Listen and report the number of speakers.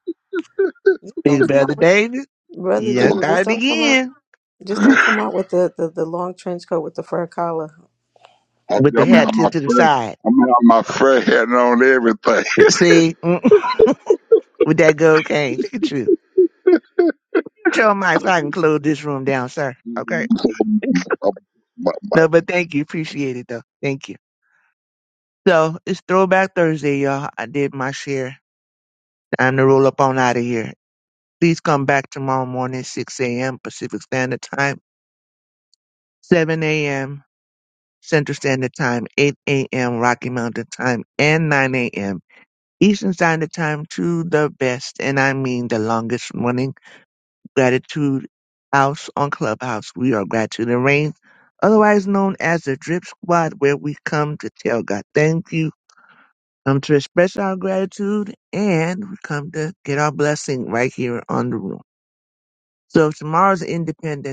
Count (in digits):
3